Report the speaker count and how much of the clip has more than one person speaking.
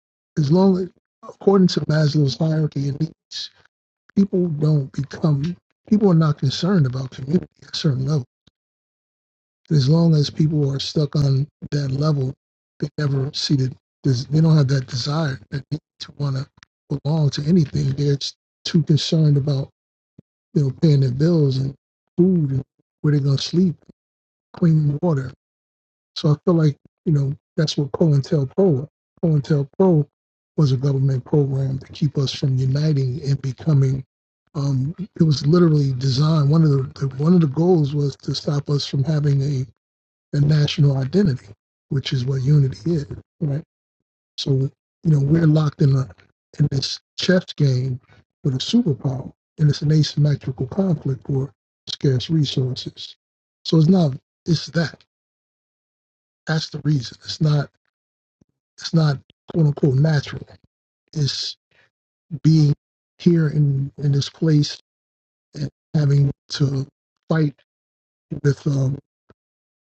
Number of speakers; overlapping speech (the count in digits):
1, no overlap